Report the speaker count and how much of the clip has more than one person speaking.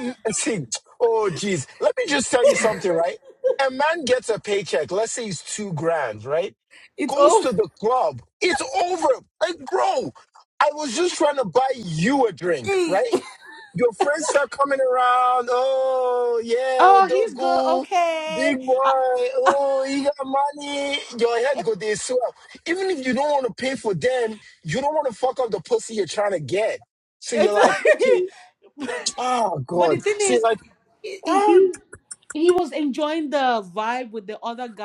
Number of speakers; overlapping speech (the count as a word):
two, about 12%